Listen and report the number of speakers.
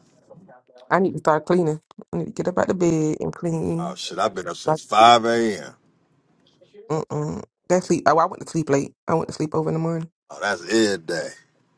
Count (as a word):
two